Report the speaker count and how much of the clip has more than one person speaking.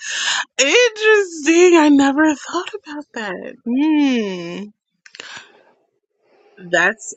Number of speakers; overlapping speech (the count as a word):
one, no overlap